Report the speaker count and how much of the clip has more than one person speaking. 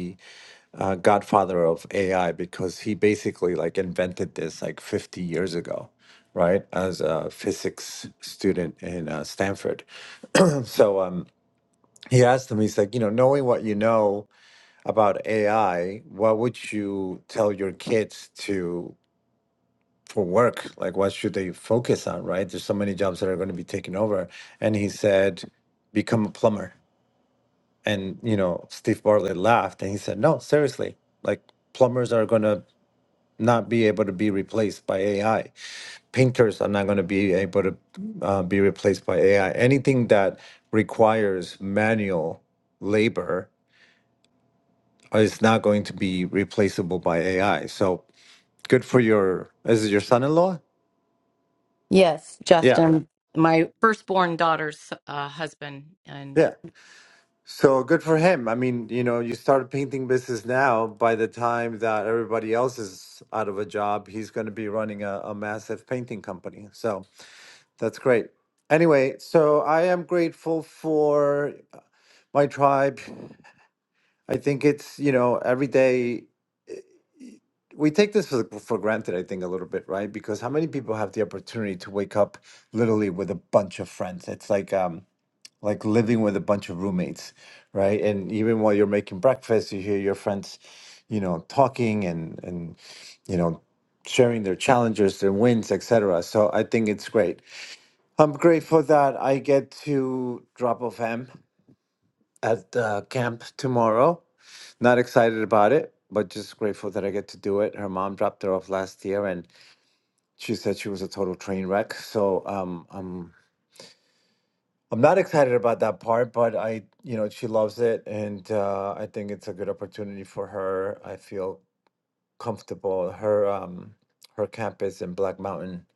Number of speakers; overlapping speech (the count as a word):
two, under 1%